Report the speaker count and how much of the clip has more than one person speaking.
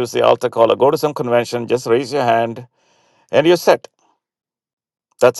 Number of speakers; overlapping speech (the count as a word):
one, no overlap